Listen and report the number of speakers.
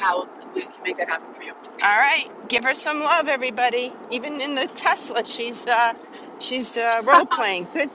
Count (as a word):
two